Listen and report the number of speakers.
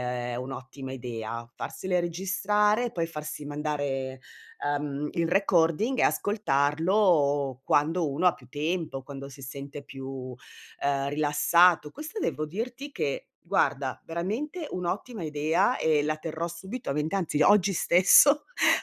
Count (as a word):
one